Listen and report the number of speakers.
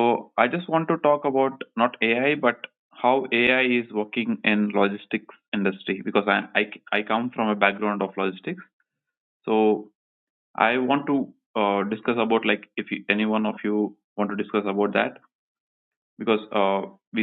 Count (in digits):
1